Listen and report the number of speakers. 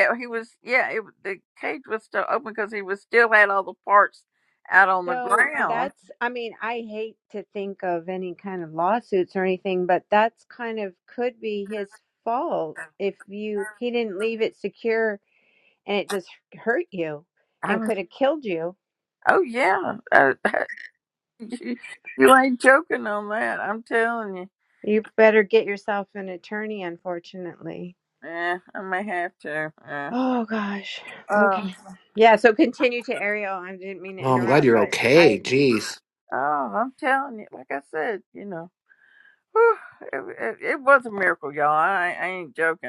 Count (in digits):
3